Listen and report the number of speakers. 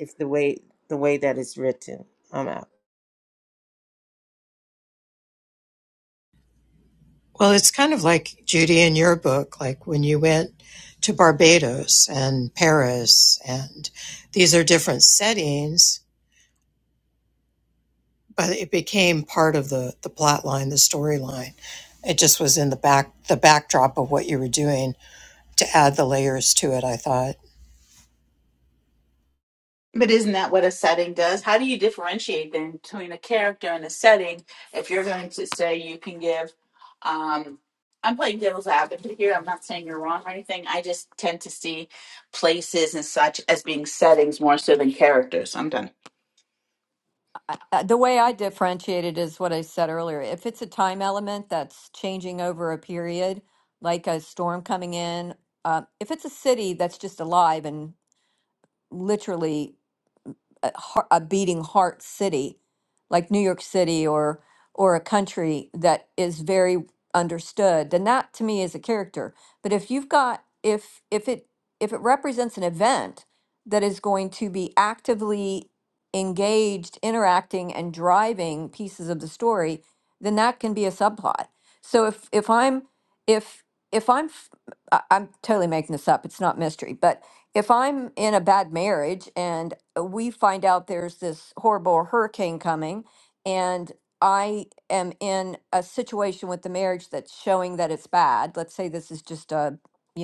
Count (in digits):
4